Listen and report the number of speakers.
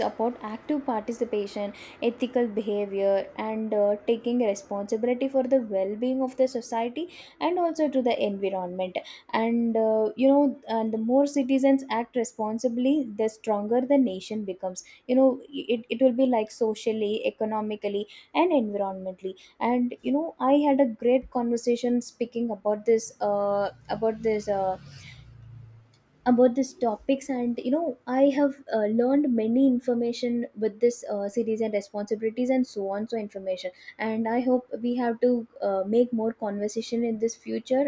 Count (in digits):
1